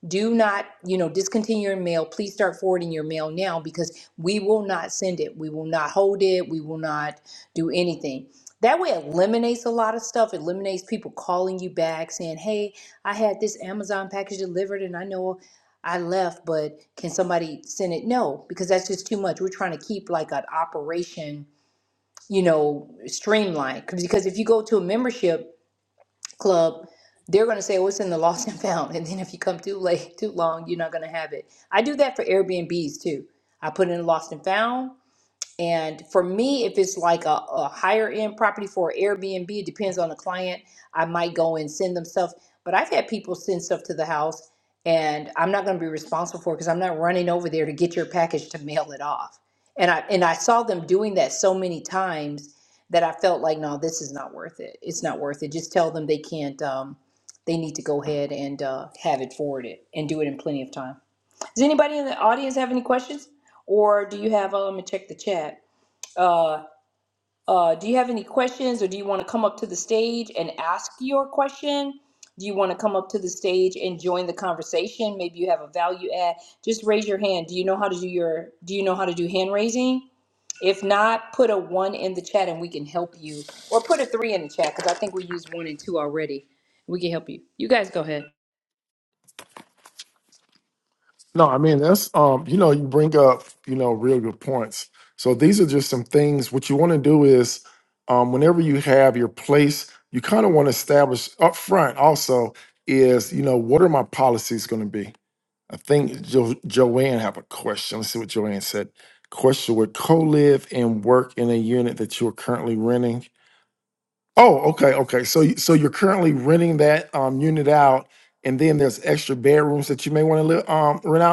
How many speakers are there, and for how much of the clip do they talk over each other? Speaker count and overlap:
2, no overlap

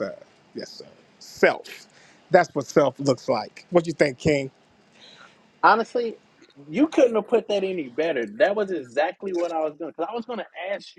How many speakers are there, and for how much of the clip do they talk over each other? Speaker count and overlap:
2, no overlap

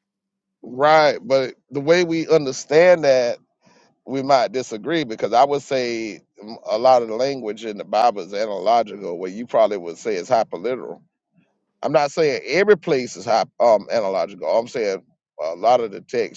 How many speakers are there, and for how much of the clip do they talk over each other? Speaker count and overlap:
1, no overlap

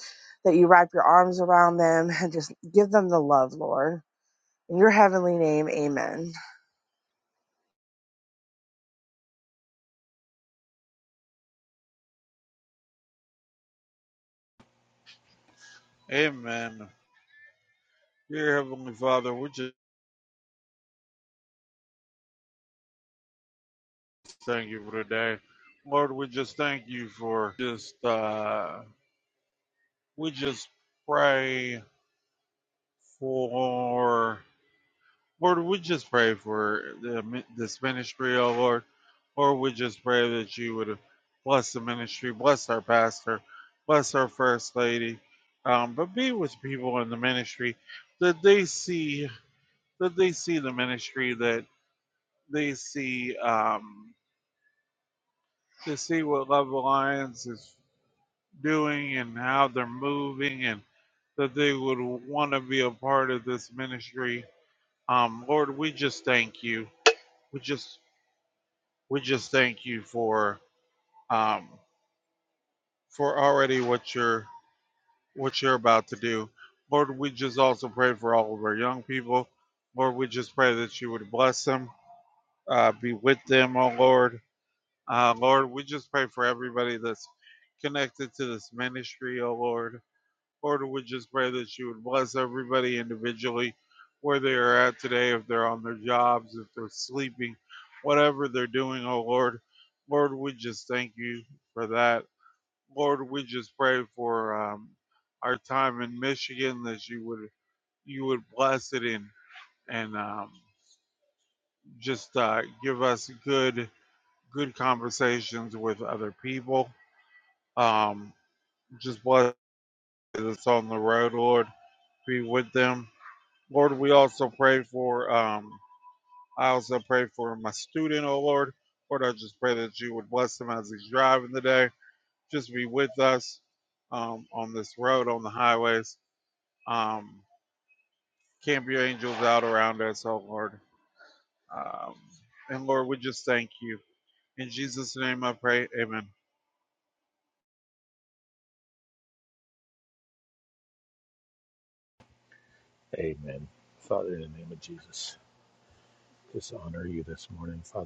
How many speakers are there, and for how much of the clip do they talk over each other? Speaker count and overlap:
3, no overlap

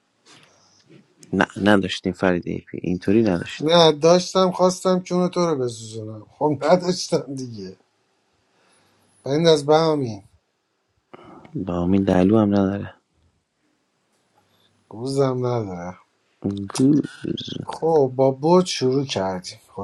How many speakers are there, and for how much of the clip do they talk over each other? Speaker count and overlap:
2, about 1%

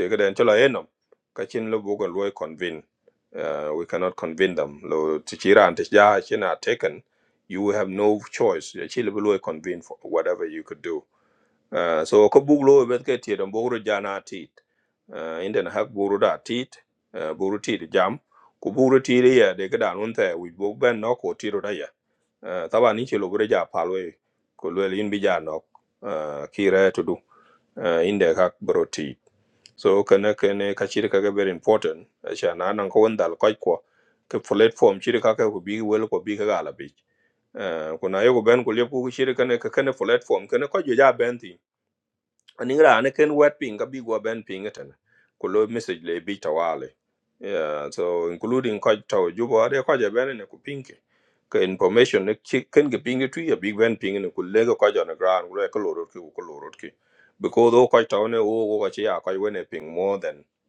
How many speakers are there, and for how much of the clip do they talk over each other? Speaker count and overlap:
1, no overlap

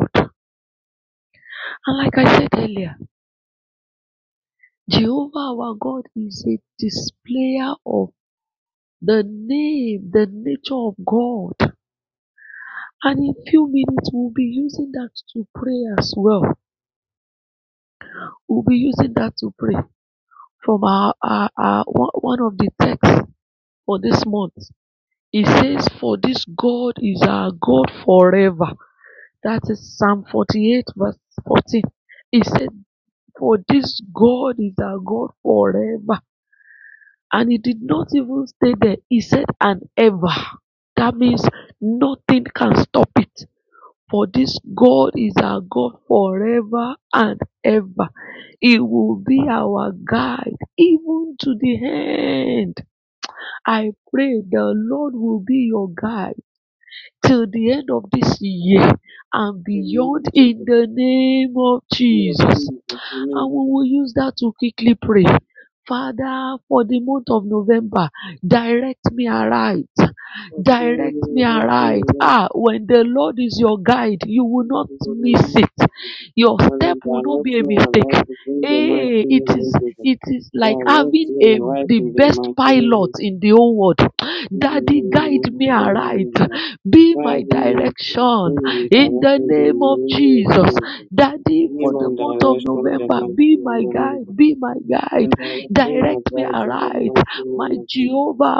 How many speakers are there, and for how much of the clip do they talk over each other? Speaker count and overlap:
2, about 21%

